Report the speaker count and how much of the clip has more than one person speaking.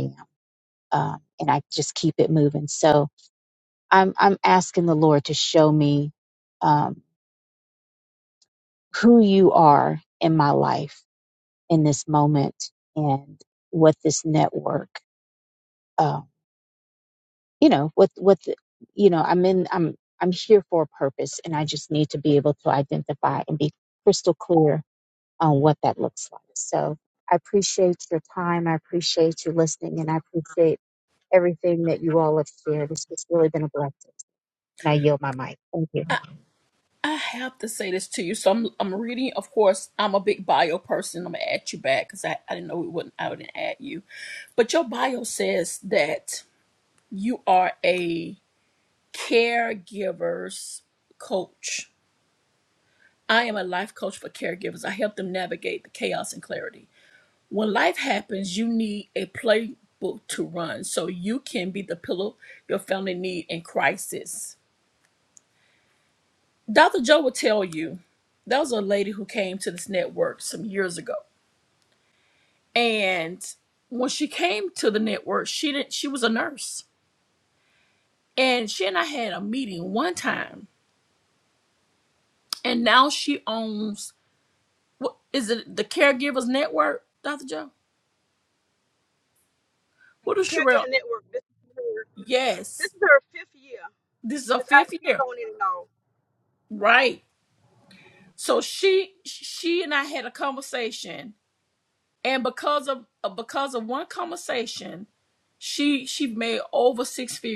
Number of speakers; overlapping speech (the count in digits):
3, about 1%